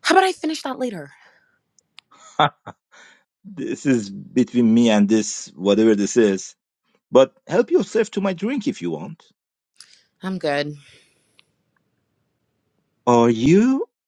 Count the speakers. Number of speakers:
two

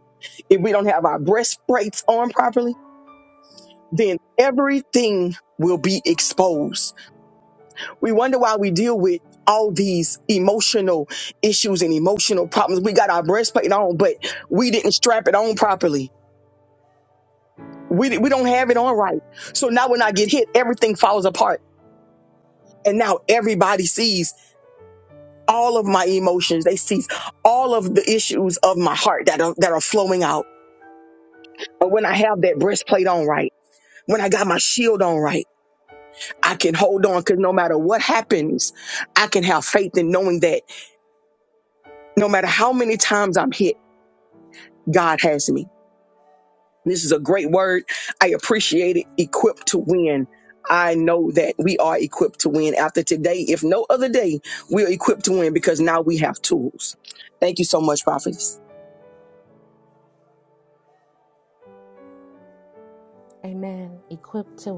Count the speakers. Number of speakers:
two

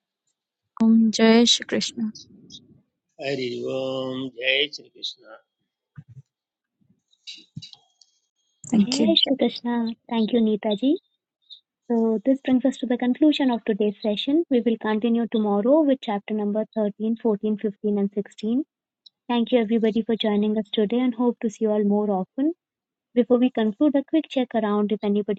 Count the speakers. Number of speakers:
three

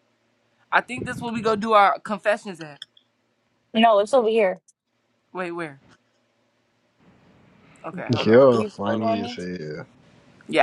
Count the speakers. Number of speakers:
three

